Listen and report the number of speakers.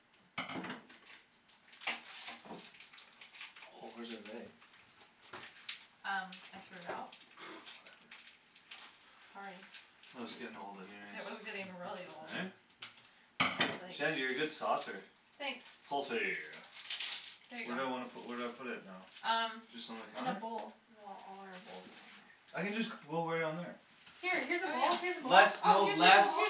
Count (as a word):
three